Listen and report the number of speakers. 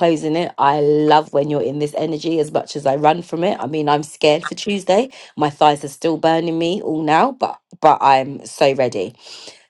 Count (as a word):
one